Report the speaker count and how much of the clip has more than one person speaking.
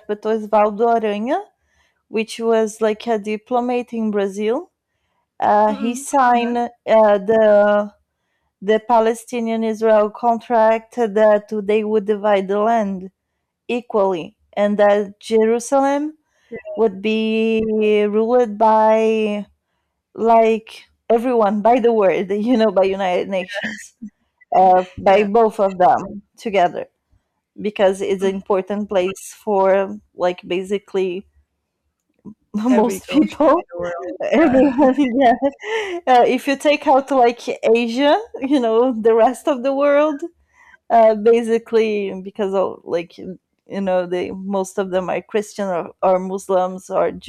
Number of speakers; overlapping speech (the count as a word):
two, about 6%